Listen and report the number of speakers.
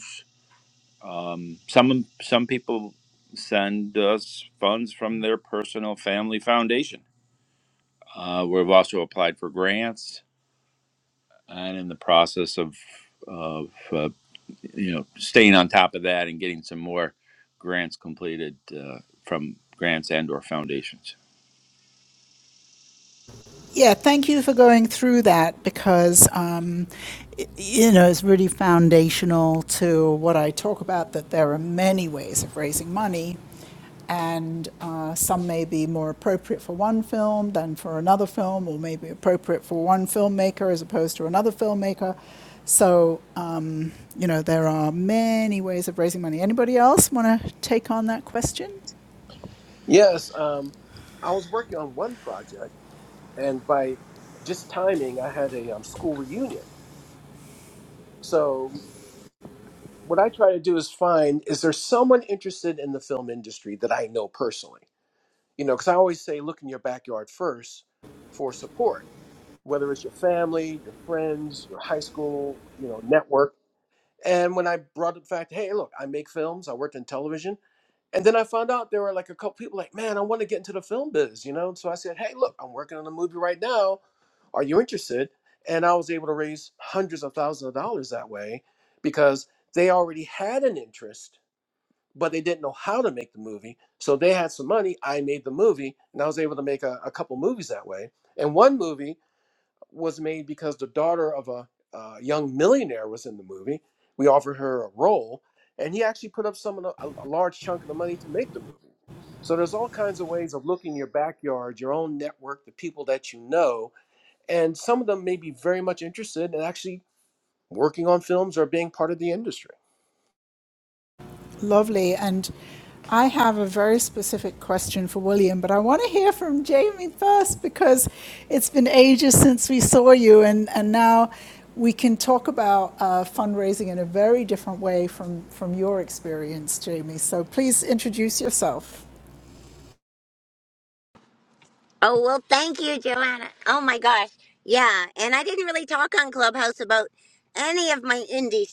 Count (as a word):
four